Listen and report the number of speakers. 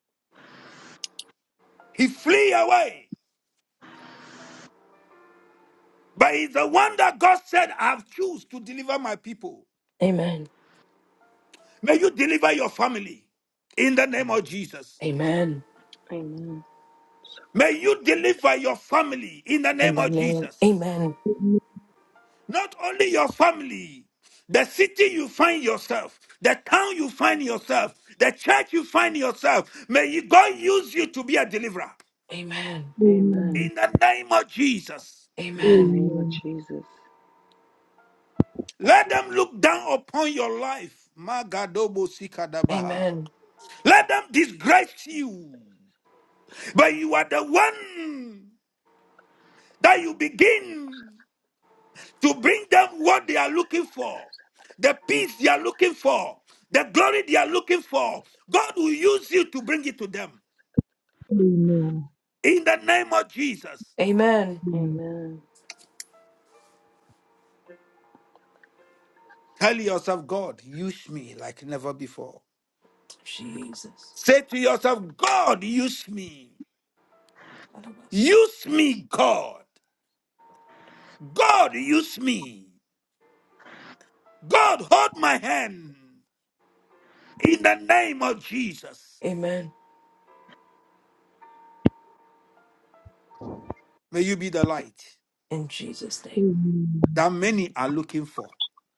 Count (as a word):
four